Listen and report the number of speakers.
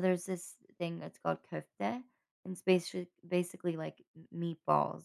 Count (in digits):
1